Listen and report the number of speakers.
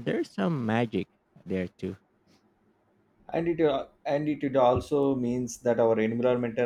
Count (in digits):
2